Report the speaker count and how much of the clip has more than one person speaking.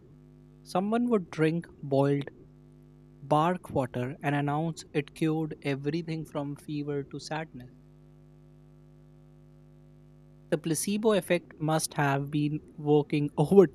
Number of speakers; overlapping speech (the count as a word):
one, no overlap